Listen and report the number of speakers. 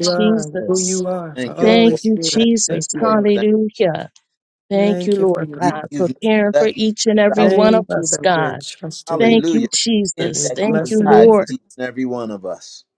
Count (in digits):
3